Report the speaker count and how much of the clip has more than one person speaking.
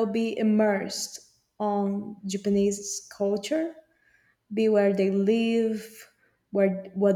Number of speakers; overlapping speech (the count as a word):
one, no overlap